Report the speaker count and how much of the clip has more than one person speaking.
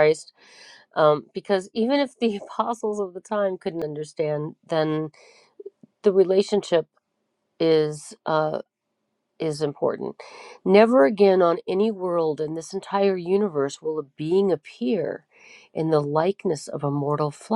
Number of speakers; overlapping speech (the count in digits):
1, no overlap